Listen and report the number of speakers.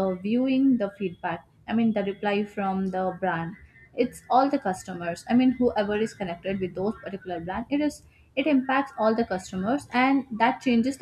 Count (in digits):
1